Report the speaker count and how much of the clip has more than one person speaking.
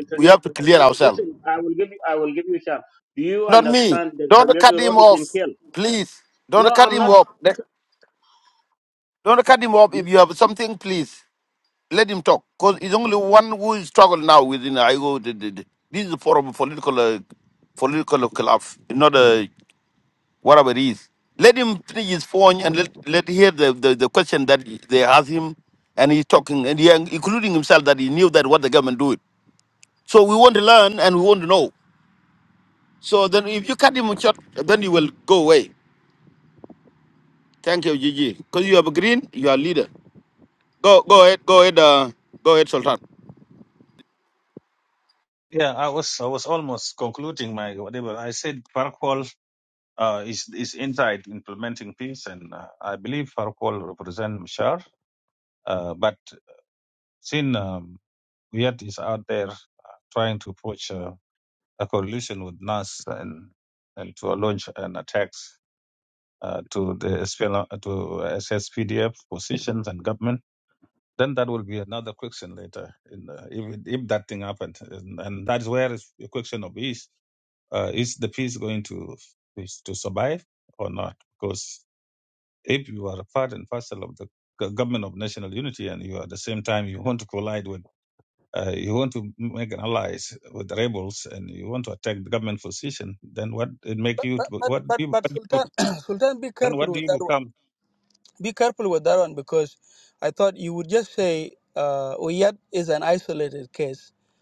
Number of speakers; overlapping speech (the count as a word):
four, about 5%